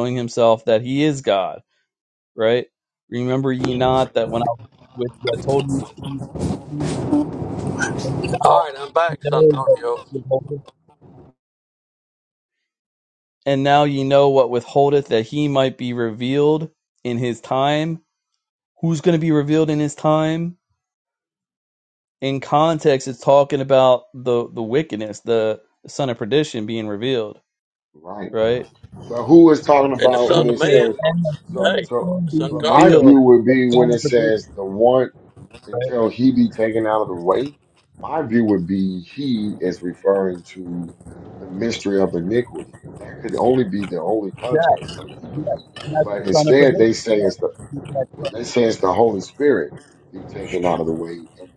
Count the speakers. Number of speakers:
3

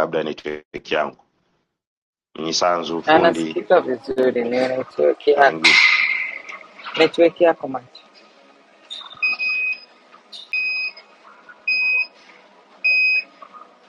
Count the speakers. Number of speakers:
2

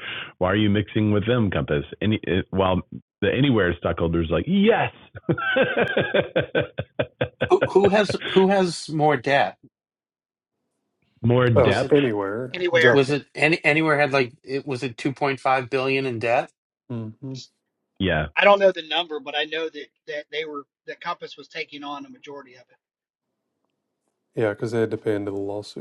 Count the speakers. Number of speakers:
4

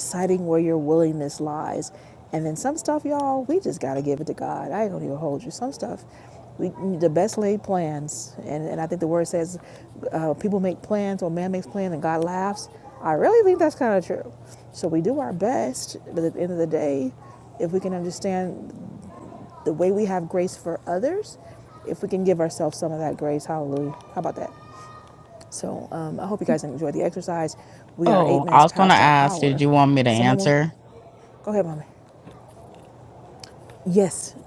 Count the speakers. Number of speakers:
2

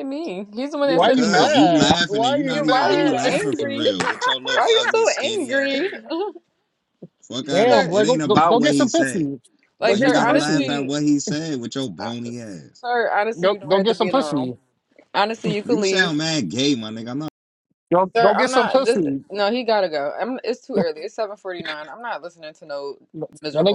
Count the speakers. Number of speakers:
3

